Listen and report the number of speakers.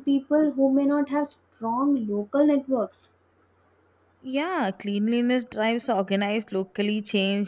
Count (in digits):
2